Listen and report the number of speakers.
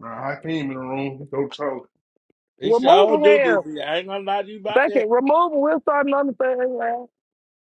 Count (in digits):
3